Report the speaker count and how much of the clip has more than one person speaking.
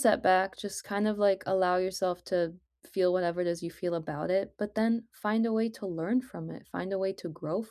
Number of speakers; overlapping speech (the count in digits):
1, no overlap